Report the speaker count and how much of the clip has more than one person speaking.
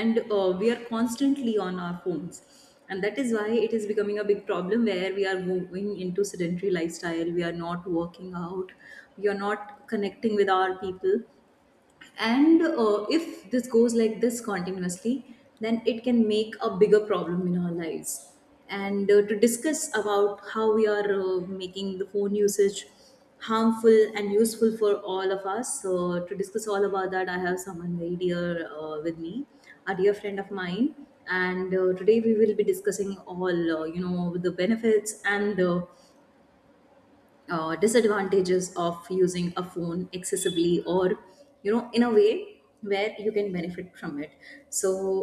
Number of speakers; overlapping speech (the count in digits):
1, no overlap